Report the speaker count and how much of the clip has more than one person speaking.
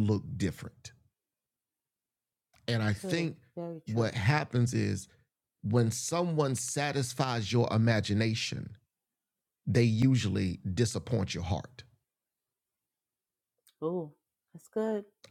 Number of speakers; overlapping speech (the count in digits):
2, about 3%